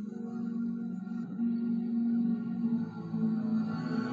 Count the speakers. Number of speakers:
0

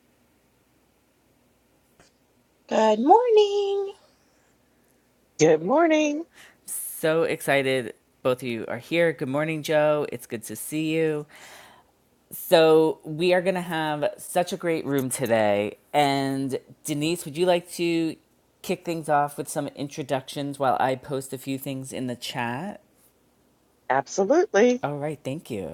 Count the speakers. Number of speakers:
3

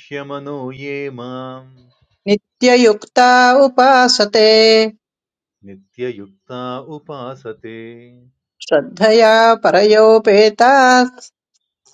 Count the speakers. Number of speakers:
2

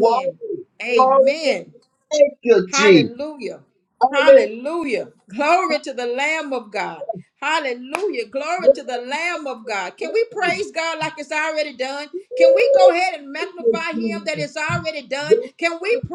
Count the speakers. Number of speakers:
2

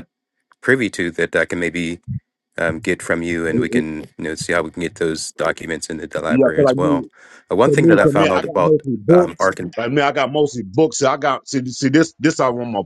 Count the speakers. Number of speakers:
2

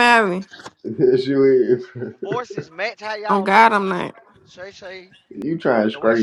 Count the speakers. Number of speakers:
3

